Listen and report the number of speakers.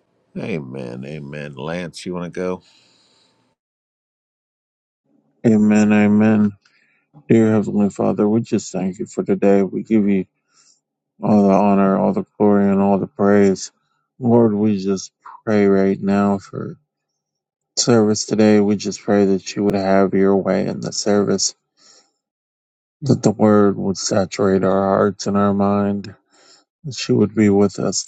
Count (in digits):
2